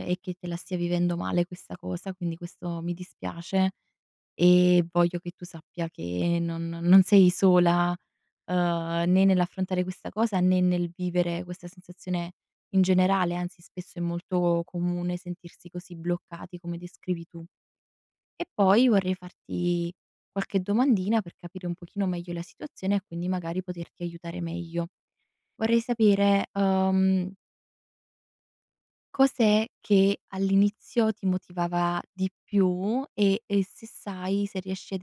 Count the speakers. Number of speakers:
one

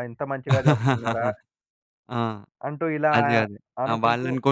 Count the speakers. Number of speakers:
two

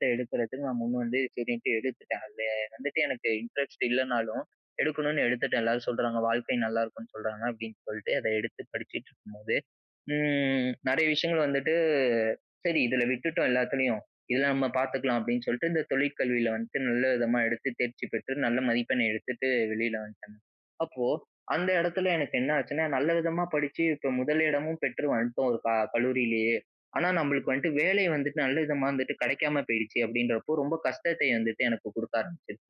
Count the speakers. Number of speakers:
one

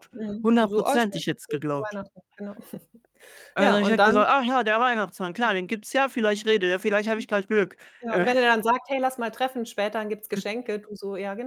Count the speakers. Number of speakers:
two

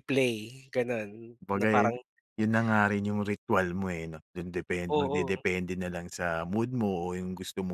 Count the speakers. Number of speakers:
two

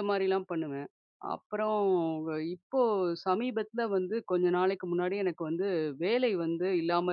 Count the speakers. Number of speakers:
one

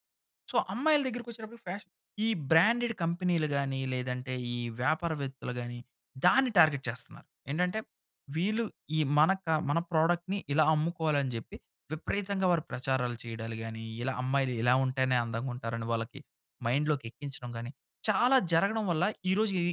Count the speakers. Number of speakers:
one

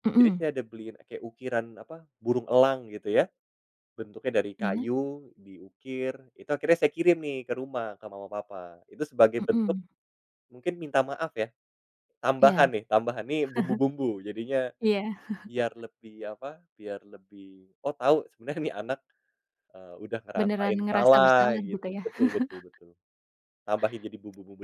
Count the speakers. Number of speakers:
two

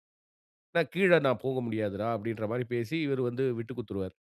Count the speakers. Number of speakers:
one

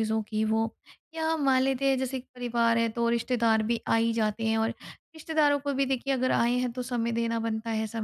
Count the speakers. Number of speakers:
one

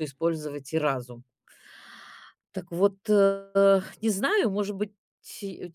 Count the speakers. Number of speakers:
one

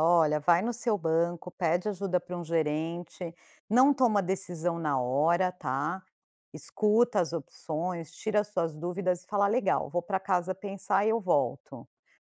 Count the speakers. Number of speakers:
one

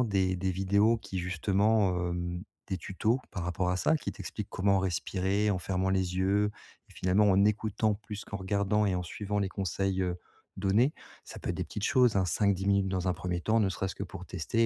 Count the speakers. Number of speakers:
one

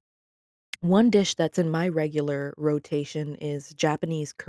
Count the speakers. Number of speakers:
one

